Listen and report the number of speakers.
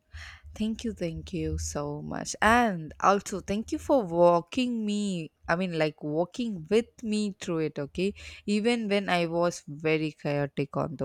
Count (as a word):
one